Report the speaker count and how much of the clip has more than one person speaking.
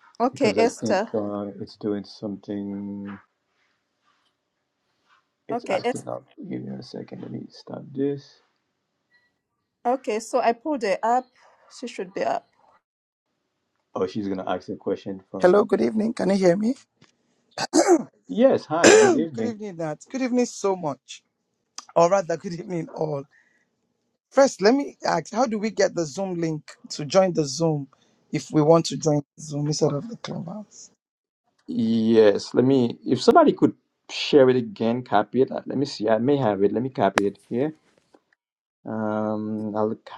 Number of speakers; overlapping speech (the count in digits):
3, about 4%